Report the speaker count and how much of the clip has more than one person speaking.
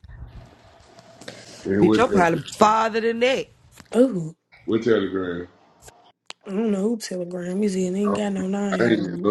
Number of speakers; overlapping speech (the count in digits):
3, about 12%